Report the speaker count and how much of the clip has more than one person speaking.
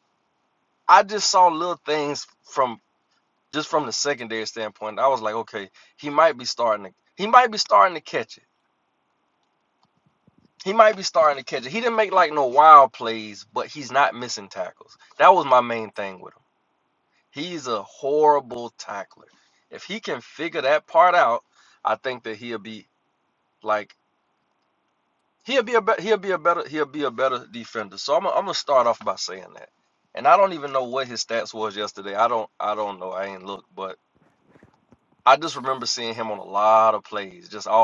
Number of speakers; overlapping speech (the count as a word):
one, no overlap